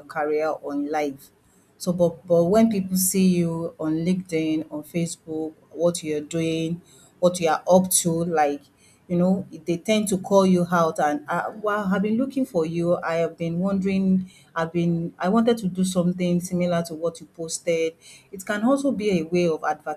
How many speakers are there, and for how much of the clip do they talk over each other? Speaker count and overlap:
one, no overlap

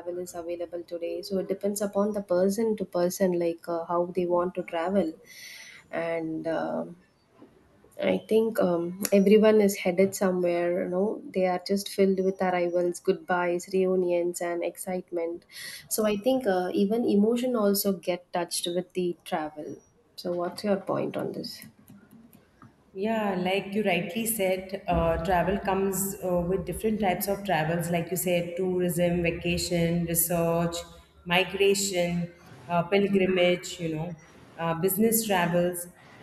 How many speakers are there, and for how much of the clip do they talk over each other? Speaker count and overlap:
two, no overlap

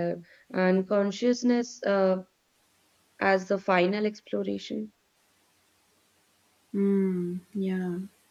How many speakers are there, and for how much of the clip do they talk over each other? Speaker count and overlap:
two, no overlap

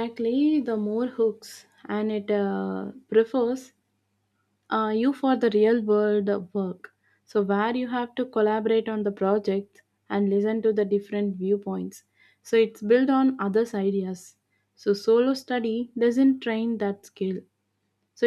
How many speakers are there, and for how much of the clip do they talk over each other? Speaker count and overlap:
one, no overlap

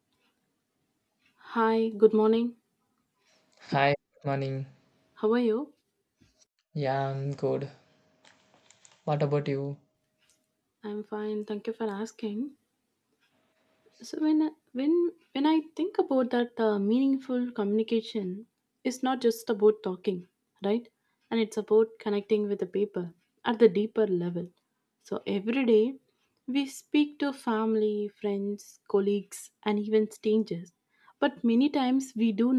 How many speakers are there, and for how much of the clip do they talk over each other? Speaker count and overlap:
two, no overlap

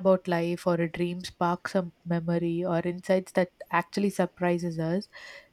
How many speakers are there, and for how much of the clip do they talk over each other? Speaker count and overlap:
one, no overlap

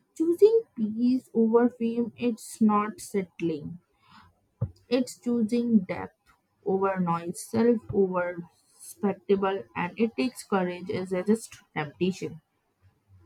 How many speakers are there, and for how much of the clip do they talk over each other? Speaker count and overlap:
one, no overlap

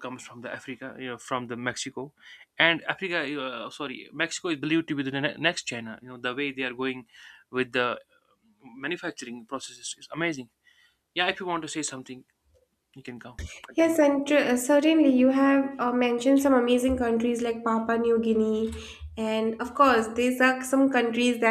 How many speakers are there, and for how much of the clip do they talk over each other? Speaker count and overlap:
two, about 1%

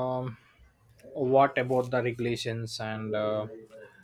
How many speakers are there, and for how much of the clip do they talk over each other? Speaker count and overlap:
one, no overlap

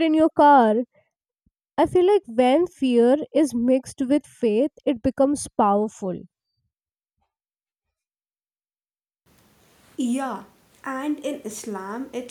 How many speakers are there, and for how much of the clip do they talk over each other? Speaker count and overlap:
two, no overlap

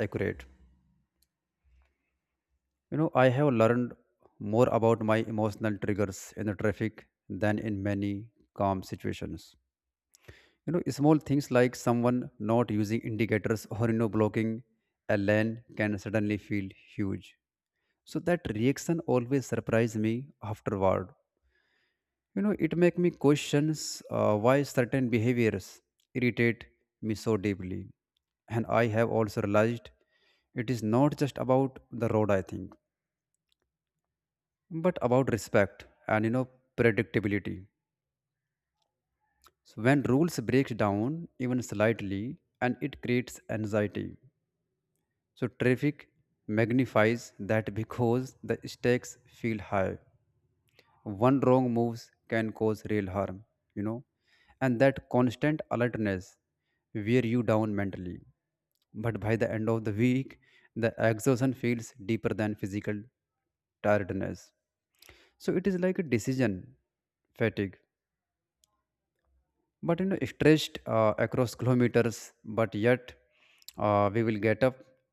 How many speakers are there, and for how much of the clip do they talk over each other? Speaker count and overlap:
one, no overlap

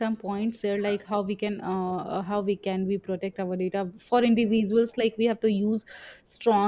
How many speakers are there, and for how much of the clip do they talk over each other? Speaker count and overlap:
one, no overlap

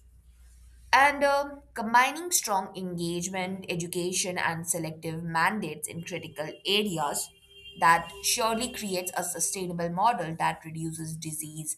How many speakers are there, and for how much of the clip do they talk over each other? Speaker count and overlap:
one, no overlap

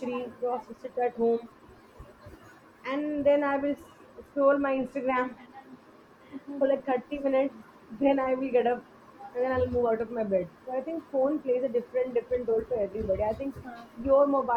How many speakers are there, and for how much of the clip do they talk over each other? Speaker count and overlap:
one, no overlap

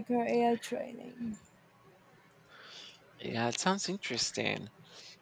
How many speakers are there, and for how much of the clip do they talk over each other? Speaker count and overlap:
two, no overlap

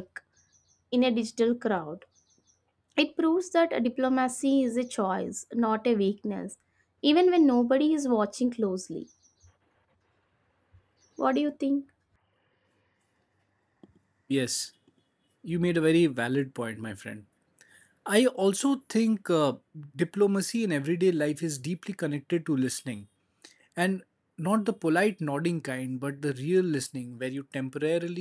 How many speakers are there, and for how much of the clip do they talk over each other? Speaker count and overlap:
two, no overlap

